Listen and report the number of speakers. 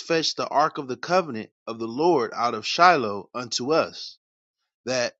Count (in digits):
1